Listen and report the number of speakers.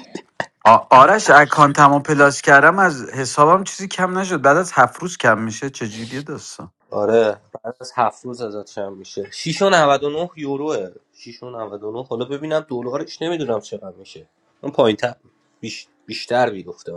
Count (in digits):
2